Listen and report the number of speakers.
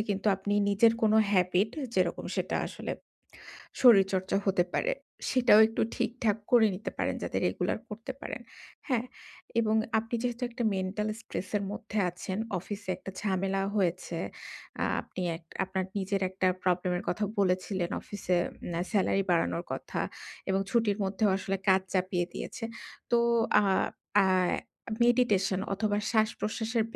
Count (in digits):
1